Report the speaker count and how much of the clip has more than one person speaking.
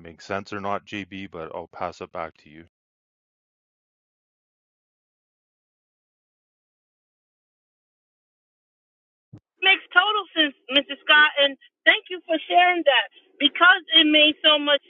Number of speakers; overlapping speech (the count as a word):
two, no overlap